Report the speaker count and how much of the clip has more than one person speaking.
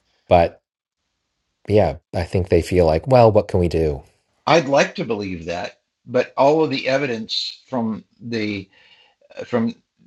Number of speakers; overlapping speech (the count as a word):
two, no overlap